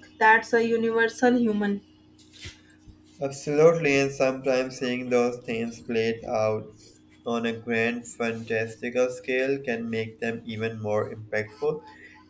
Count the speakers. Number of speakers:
2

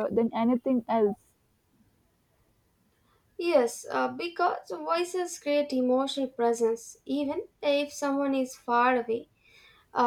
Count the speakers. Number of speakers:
2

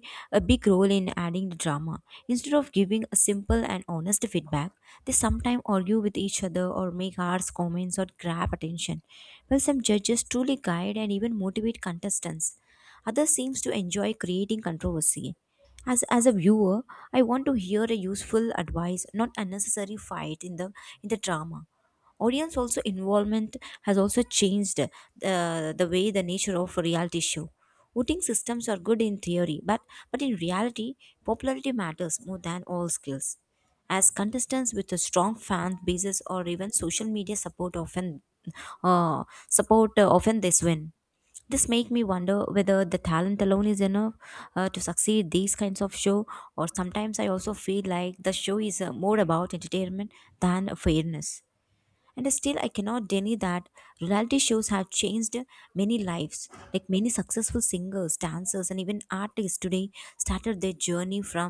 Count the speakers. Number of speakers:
1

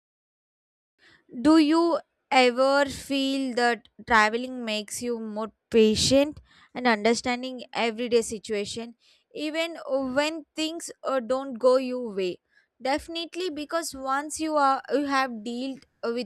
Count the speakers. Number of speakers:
1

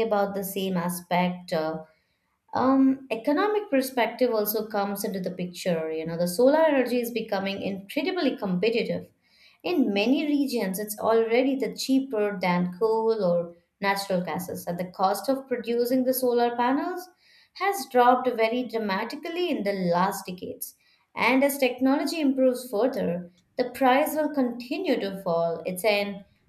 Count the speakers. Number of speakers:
1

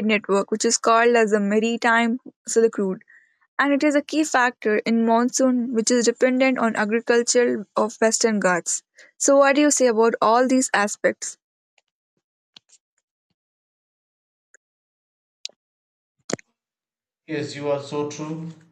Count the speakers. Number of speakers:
2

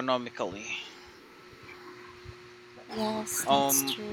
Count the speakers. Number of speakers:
2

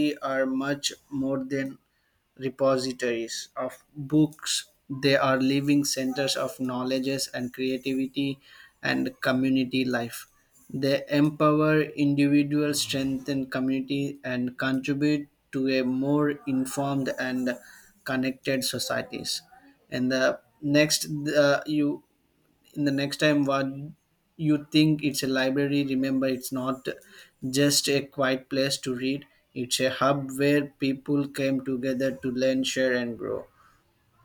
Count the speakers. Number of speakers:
1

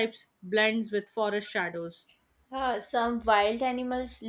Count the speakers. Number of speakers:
2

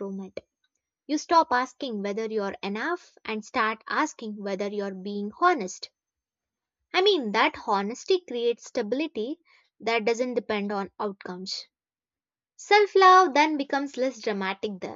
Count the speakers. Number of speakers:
1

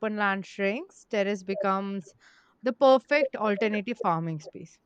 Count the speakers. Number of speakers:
1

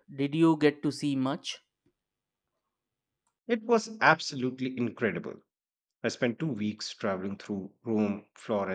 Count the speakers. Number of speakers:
2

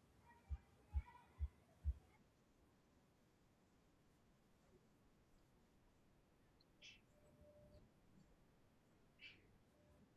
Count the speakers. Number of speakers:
0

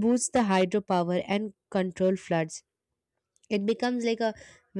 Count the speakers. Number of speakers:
1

